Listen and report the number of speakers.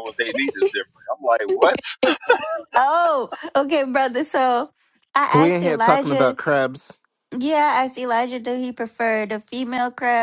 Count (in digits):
3